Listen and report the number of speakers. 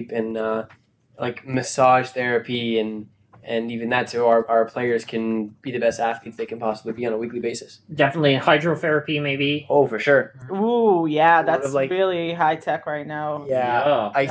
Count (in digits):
3